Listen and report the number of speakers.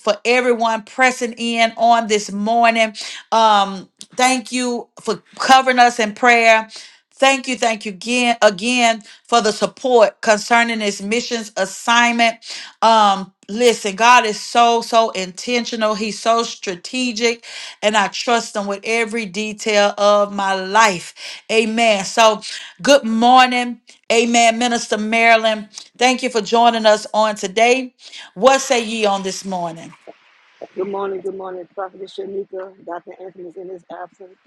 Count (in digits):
2